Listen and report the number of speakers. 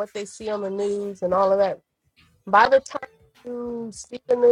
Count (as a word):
one